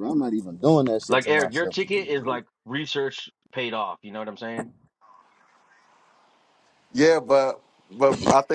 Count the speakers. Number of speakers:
three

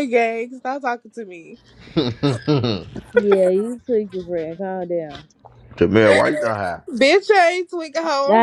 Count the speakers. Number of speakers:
three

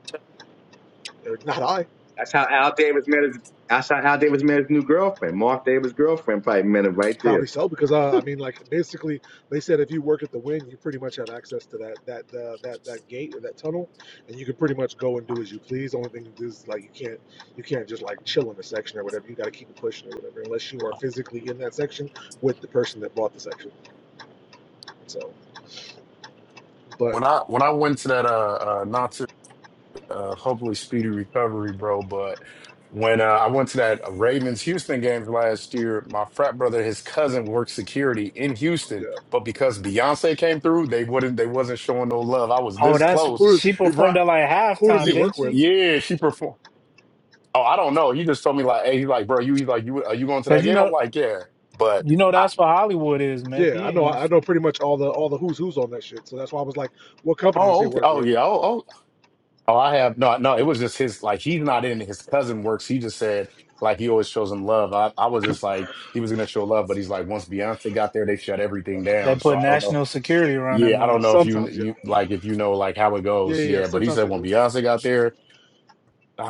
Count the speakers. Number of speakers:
four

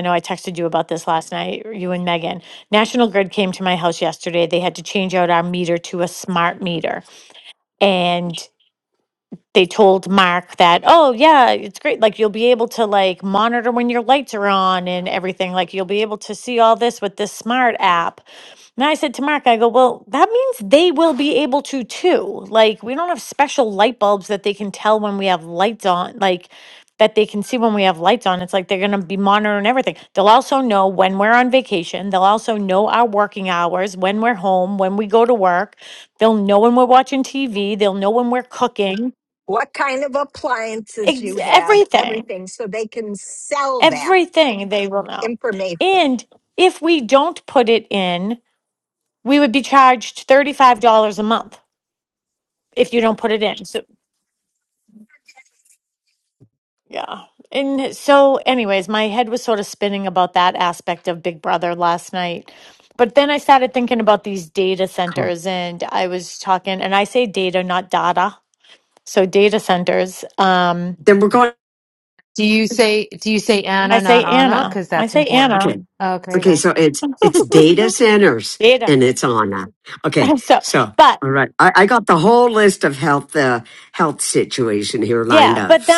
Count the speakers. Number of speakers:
four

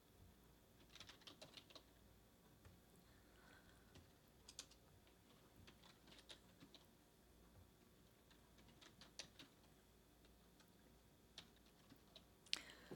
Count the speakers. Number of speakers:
zero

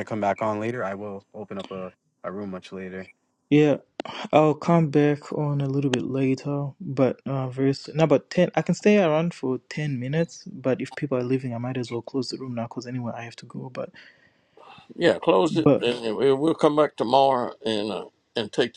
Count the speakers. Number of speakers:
three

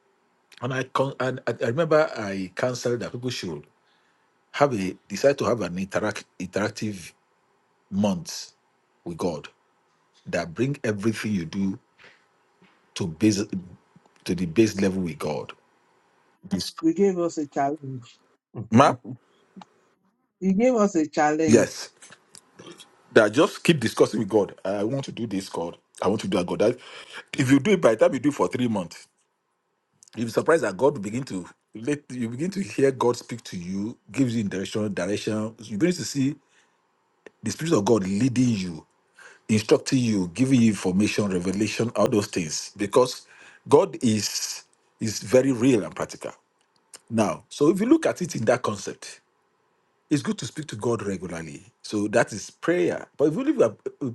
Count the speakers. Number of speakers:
two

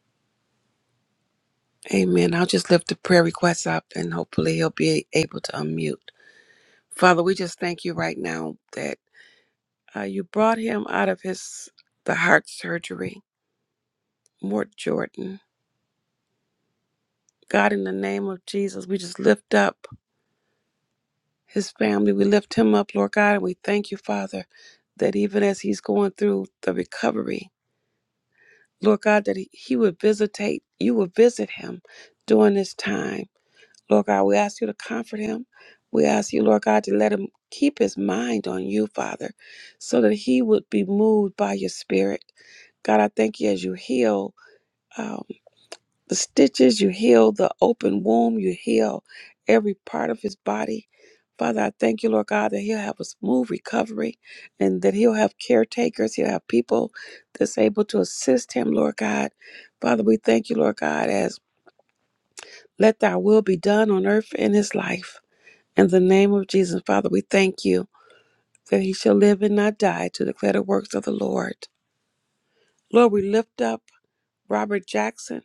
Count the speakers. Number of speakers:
one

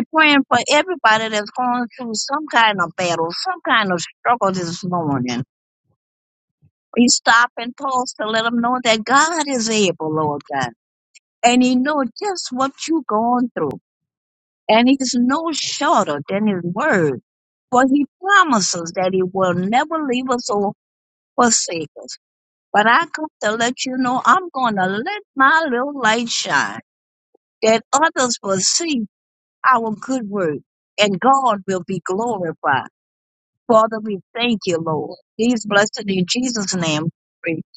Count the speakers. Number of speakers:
one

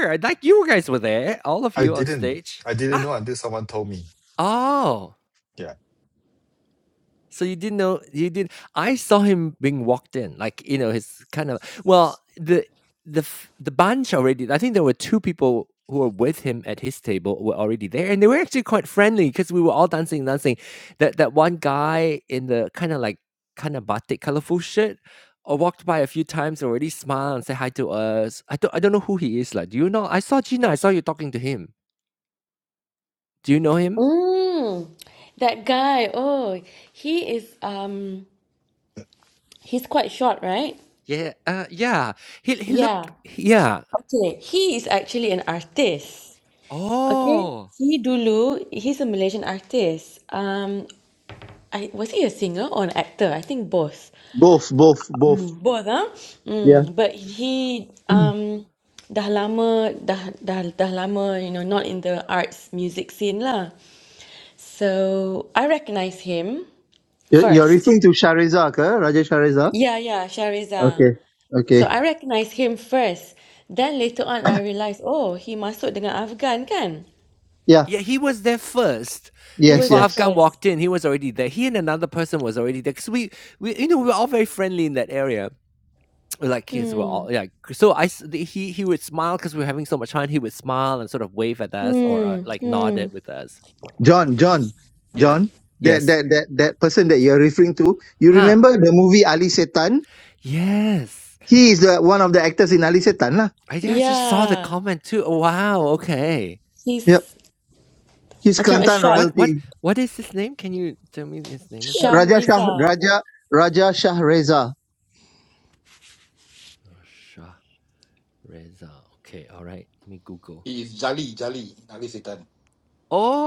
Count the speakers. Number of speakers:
five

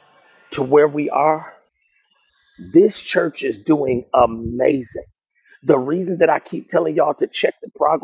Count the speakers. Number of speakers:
one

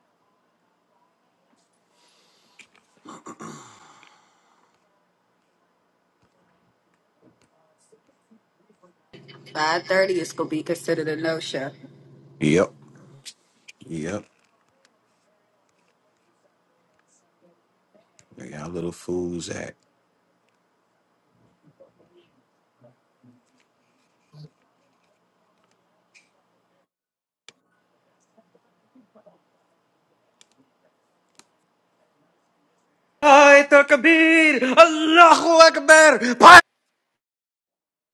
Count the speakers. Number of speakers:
three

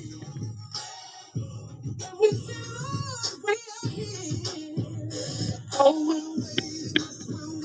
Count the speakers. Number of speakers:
zero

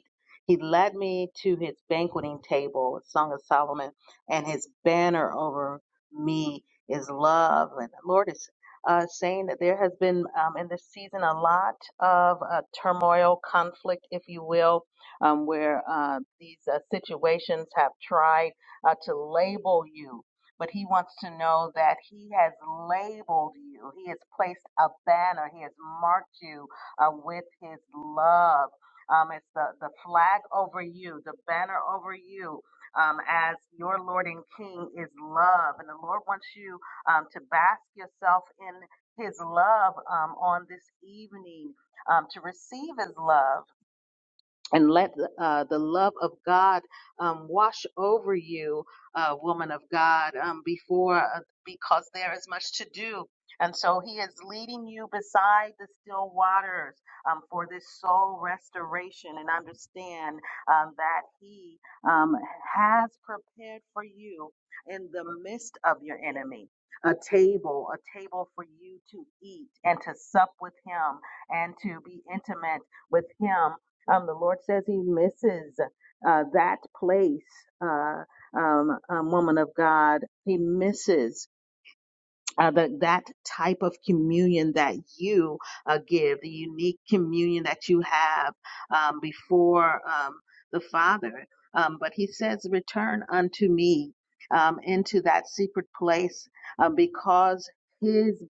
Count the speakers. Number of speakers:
one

